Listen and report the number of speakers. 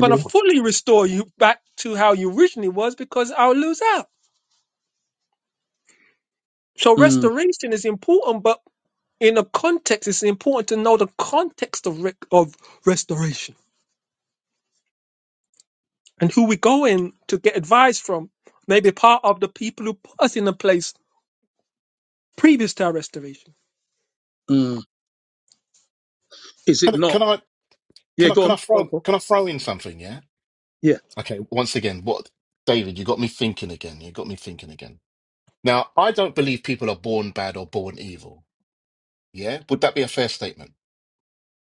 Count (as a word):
three